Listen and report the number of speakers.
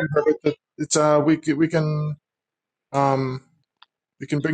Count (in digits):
1